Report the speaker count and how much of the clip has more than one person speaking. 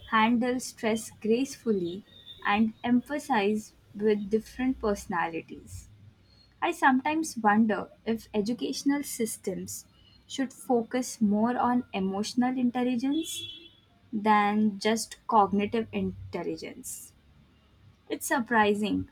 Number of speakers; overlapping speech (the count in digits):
1, no overlap